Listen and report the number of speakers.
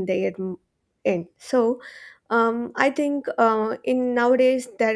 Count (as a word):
one